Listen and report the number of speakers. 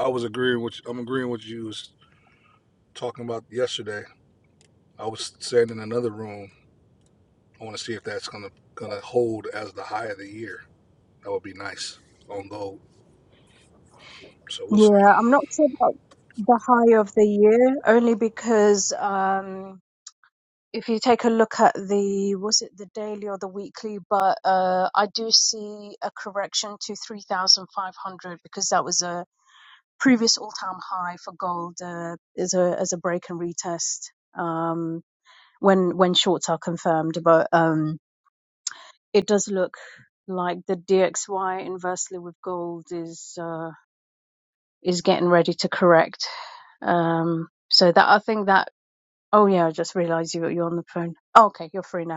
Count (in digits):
2